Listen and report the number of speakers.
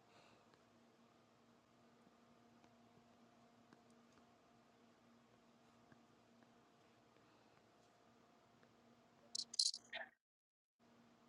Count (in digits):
0